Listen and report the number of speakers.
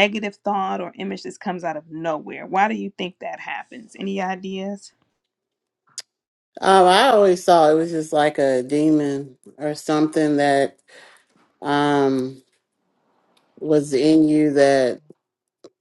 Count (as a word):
two